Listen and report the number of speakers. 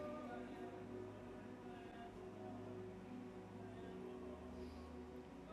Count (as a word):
zero